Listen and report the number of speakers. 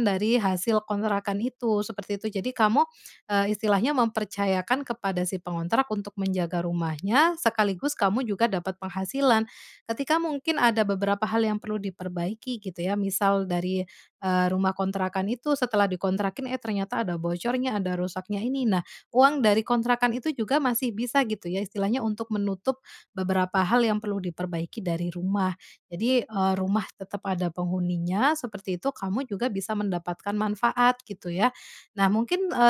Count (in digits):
1